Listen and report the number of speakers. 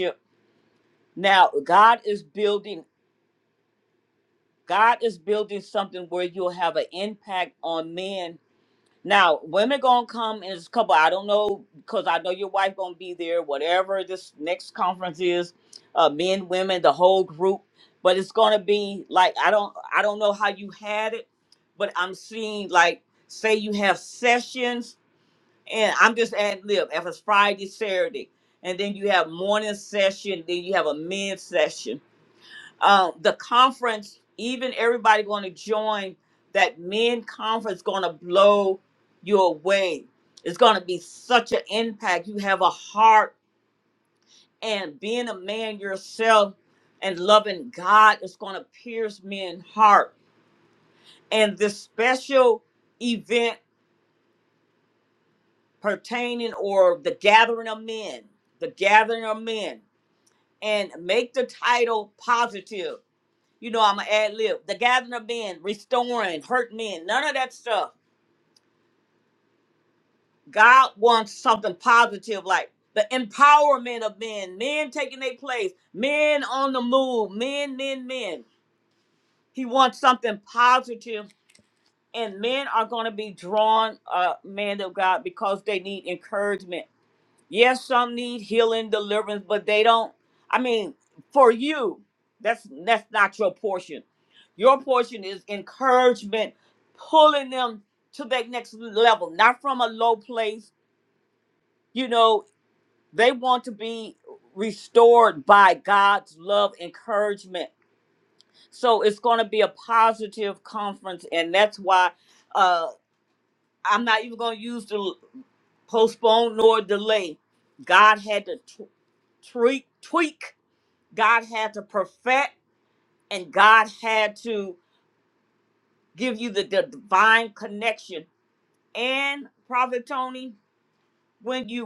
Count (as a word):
one